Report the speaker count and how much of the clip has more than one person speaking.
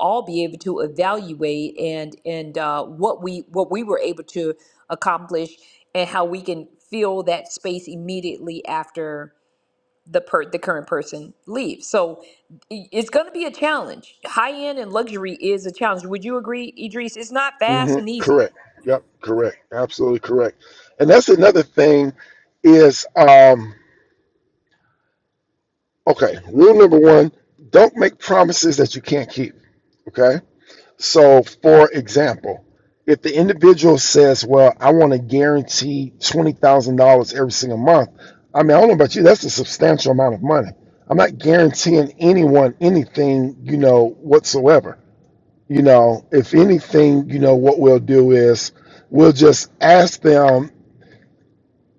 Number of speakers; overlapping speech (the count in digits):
2, about 1%